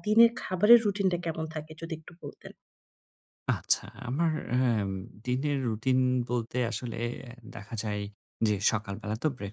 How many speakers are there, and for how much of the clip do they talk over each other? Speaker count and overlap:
two, no overlap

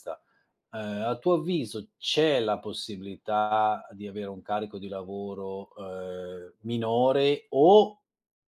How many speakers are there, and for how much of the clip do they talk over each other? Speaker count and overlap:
one, no overlap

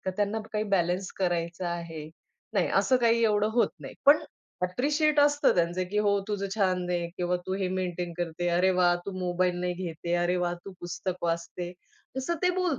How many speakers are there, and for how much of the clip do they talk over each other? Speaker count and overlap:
one, no overlap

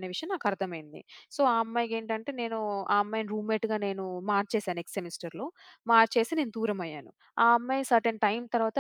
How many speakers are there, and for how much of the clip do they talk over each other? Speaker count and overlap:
one, no overlap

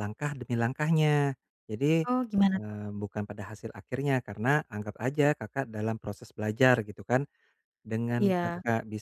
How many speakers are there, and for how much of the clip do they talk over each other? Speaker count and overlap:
two, about 7%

